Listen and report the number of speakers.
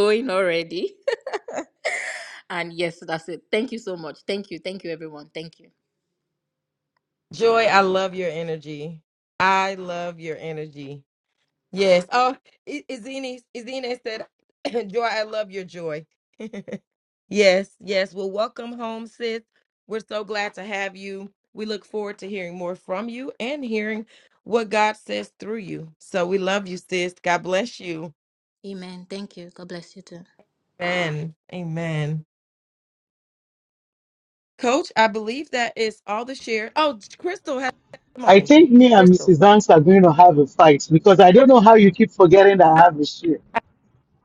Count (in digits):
3